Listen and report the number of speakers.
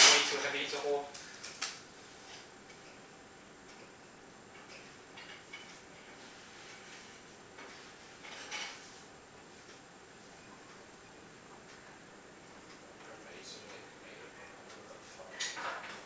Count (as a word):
two